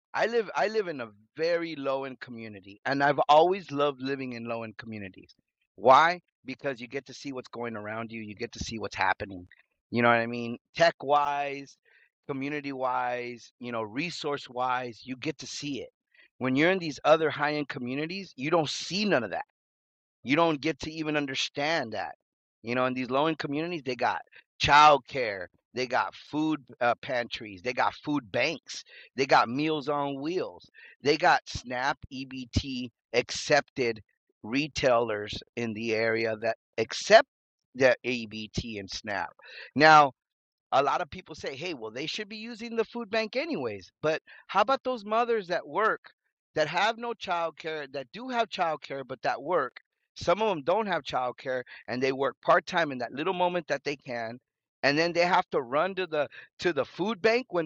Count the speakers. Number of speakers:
1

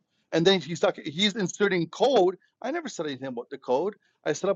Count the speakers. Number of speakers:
1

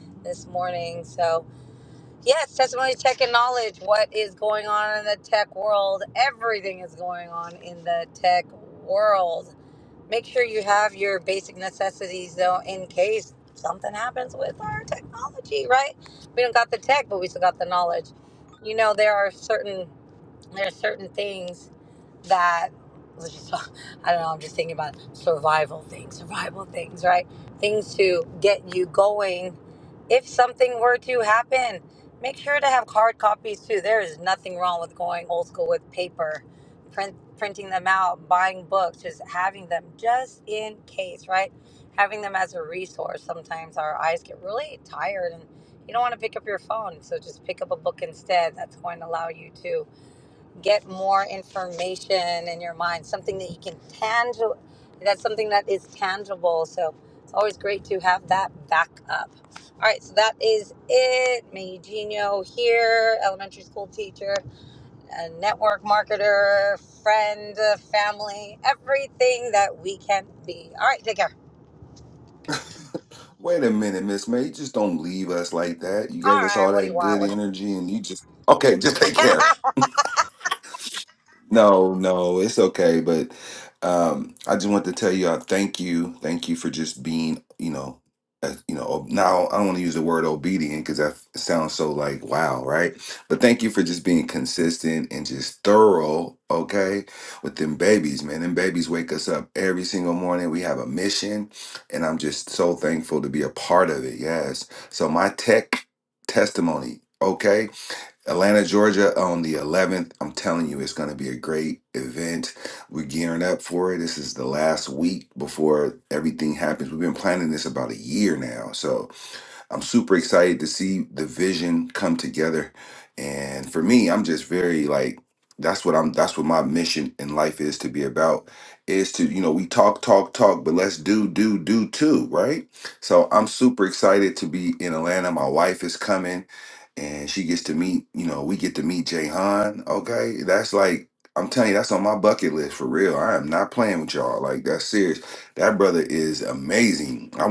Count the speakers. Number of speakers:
2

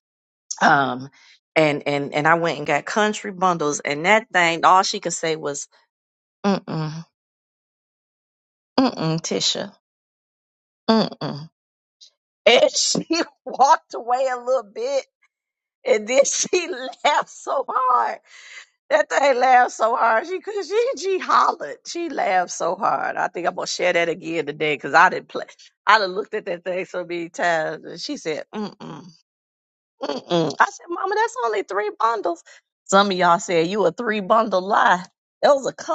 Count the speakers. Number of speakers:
1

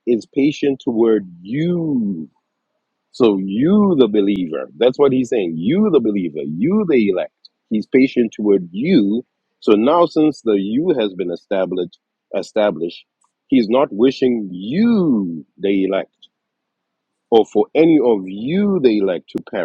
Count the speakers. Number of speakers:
1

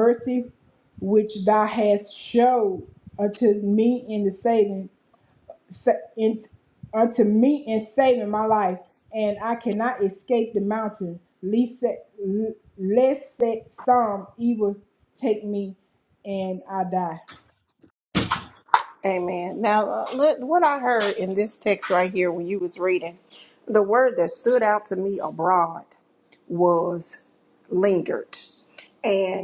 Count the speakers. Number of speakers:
2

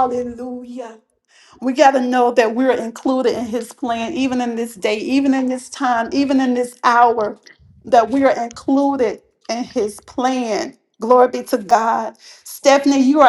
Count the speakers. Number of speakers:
1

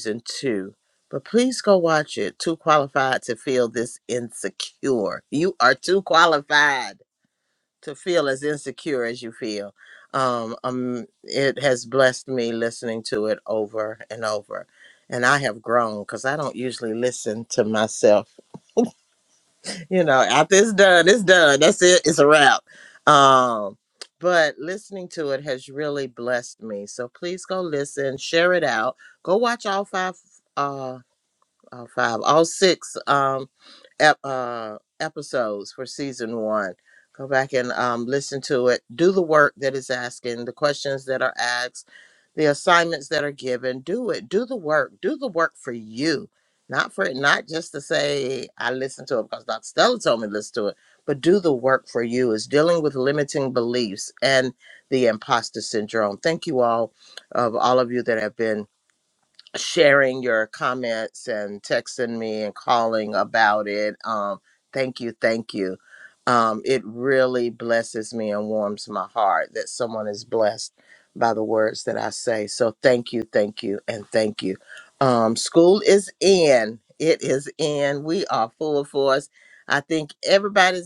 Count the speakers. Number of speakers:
1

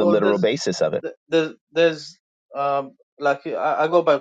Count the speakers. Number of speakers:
2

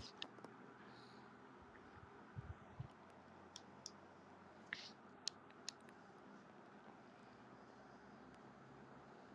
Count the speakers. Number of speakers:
0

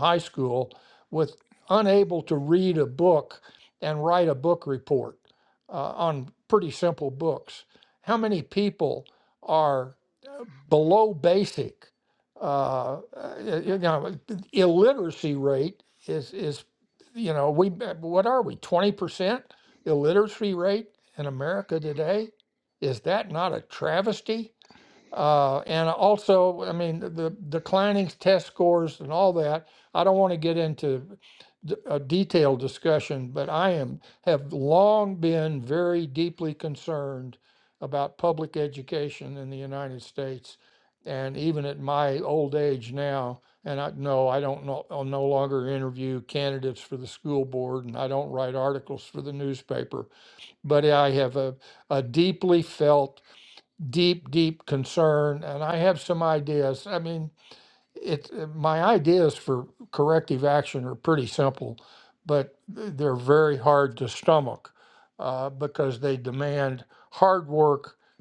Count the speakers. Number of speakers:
1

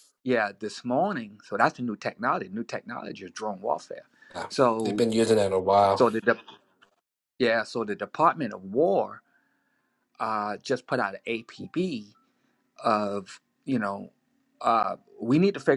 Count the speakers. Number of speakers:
2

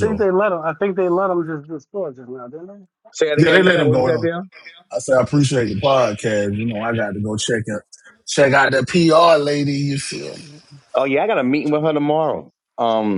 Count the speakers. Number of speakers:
3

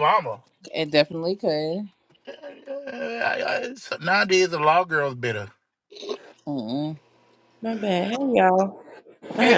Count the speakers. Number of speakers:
3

